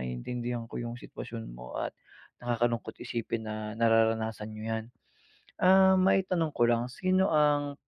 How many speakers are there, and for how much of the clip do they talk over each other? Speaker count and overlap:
1, no overlap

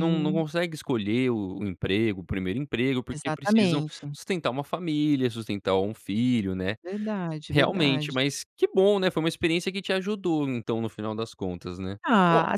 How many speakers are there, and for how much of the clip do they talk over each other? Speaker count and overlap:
2, about 16%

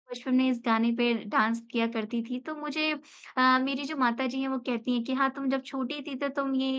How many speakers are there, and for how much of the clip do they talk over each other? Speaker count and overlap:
1, no overlap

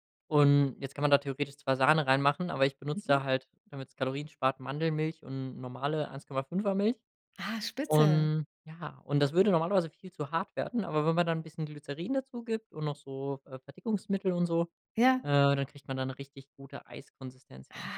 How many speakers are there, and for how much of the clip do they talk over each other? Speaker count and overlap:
2, about 4%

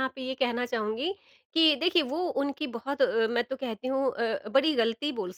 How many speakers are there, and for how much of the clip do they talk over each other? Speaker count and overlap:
1, no overlap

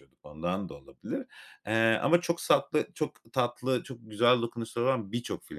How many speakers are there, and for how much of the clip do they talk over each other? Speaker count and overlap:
1, no overlap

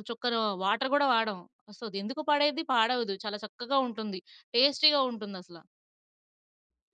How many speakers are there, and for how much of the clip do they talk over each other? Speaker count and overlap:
1, no overlap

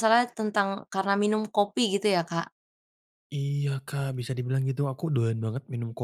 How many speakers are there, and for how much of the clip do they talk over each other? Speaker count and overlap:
2, no overlap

